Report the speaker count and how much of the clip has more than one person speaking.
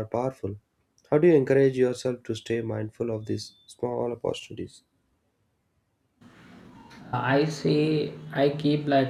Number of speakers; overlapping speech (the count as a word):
two, no overlap